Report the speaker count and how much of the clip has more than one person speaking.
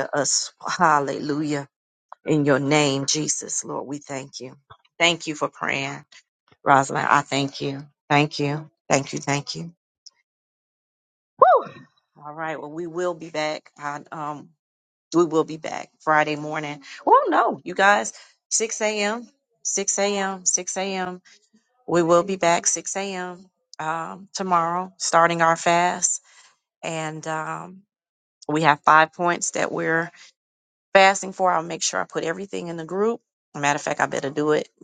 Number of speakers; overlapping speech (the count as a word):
one, no overlap